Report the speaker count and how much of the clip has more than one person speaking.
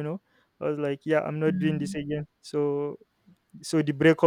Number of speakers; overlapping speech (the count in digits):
1, no overlap